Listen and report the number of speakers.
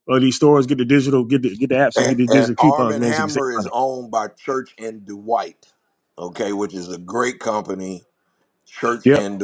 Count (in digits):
2